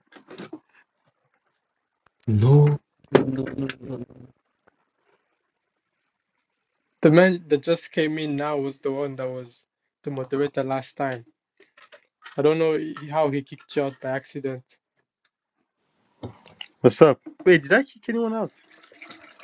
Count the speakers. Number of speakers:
three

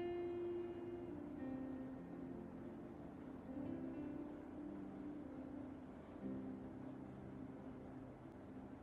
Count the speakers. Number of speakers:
zero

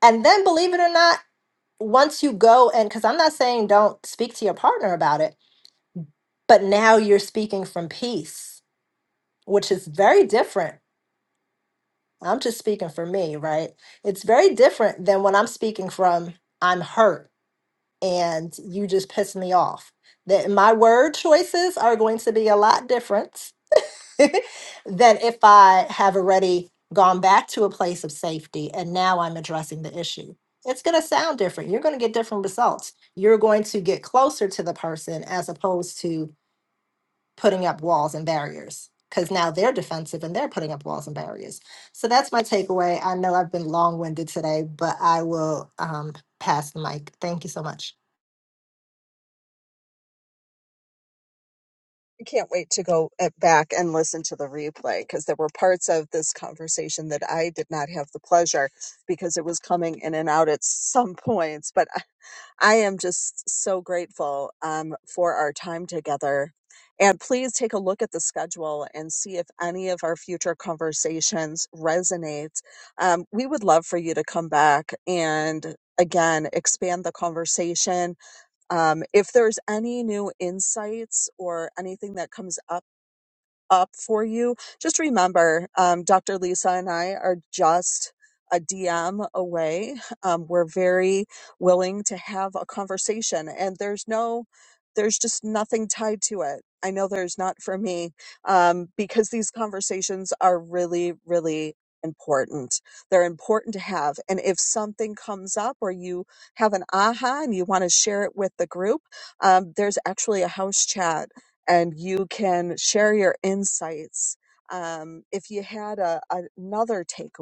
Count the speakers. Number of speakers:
two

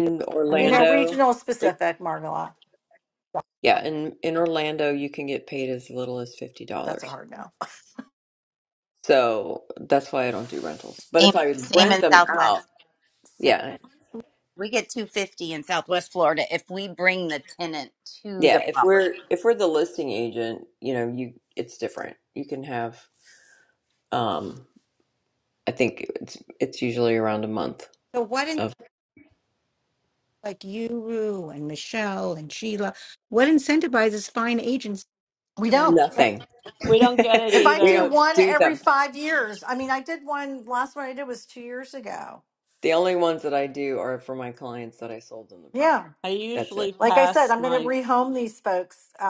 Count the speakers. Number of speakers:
five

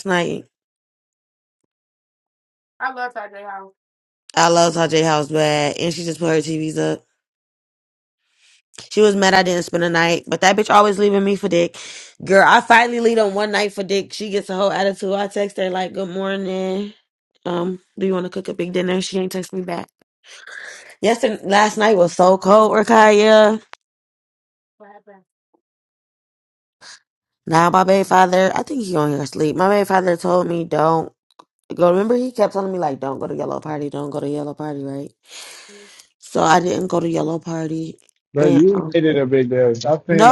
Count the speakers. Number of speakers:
three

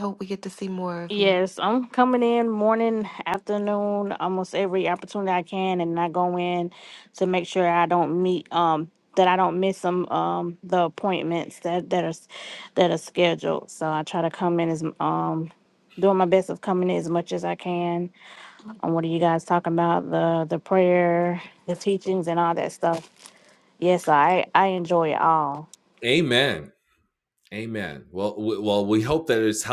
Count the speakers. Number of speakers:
three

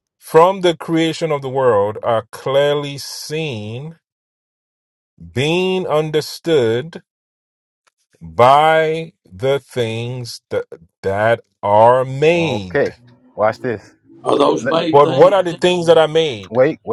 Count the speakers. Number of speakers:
three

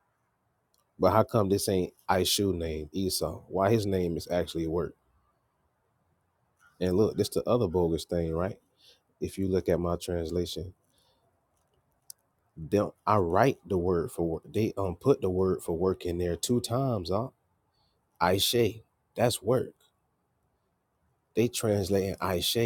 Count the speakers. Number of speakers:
one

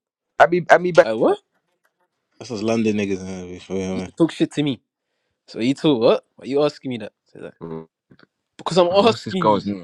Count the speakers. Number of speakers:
three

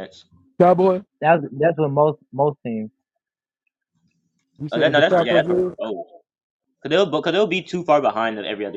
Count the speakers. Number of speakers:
three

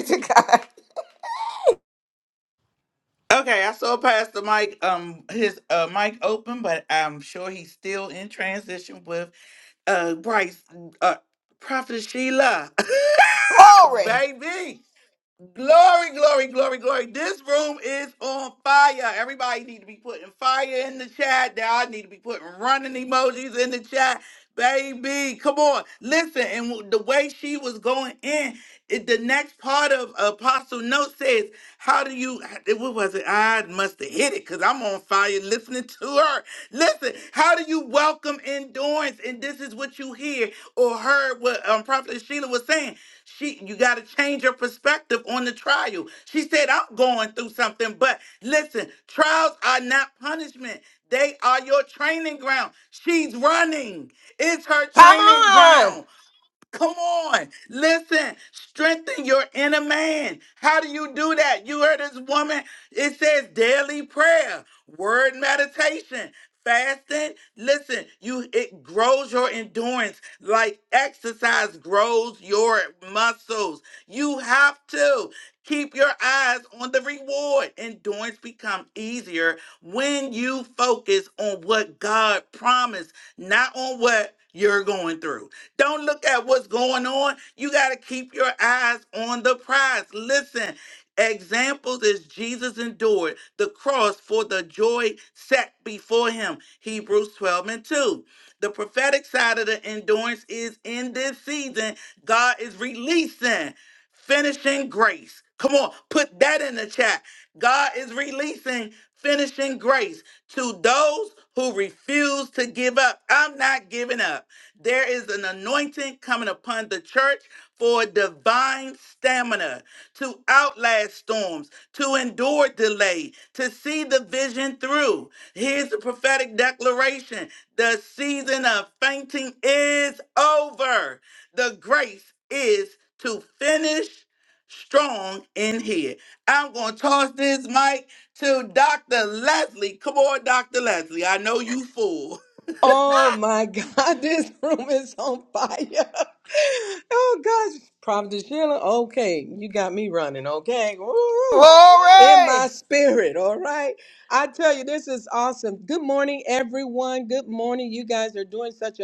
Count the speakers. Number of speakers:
three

